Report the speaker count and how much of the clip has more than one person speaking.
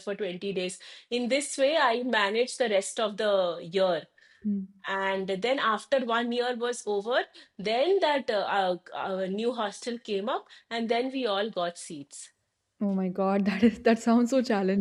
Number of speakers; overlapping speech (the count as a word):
two, no overlap